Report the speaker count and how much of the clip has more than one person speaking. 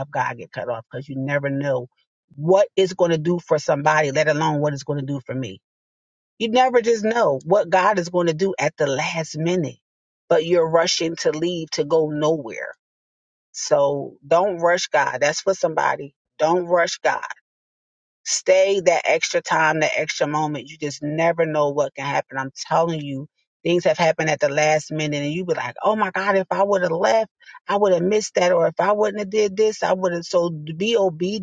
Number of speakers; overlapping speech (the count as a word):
one, no overlap